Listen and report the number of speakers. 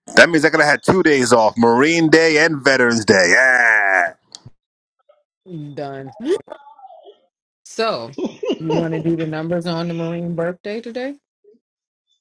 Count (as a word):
two